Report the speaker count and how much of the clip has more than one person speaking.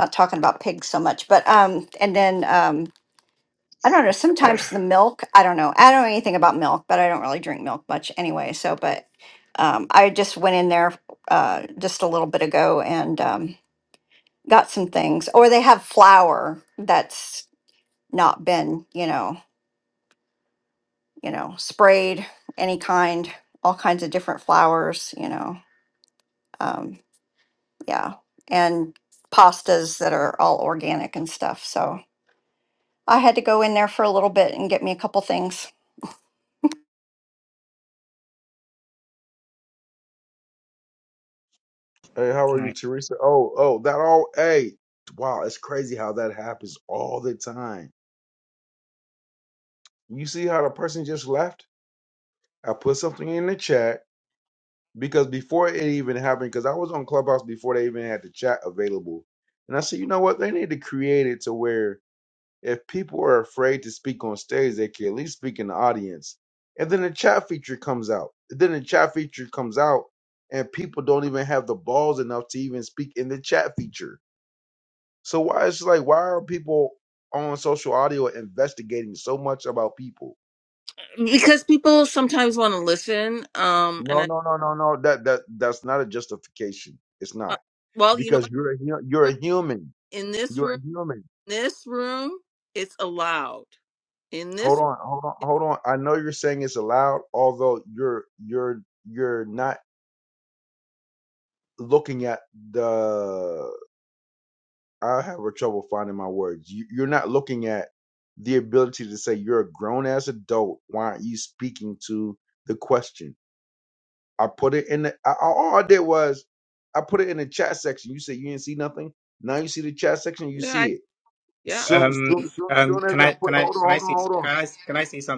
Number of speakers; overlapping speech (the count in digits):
4, about 4%